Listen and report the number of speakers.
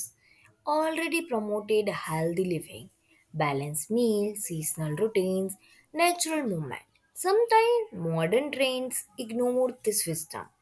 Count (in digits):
1